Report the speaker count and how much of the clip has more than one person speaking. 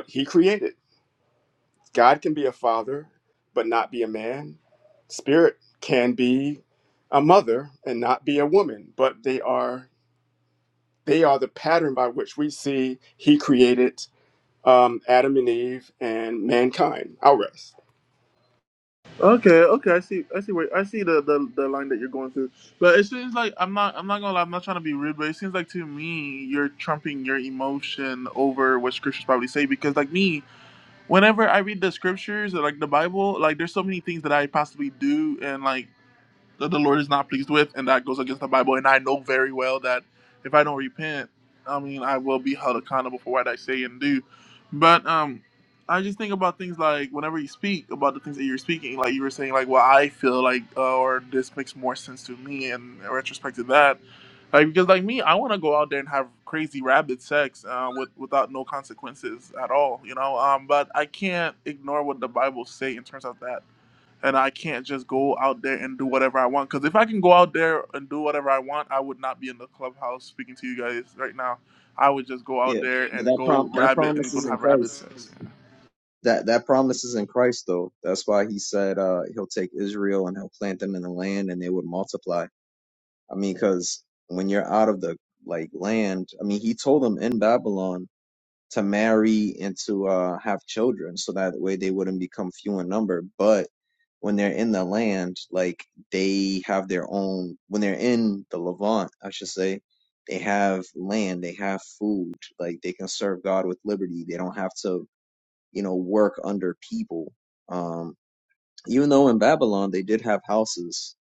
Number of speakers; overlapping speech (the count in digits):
3, about 2%